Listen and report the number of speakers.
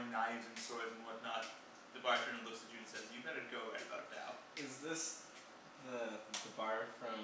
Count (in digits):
2